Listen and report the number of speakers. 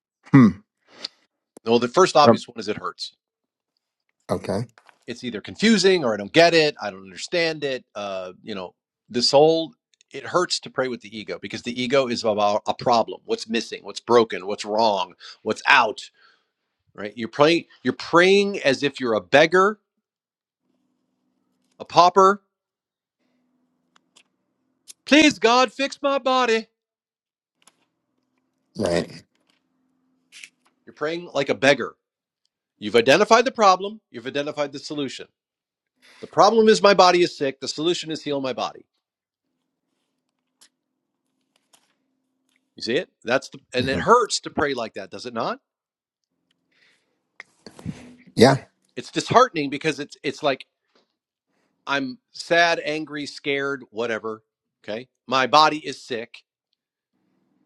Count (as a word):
two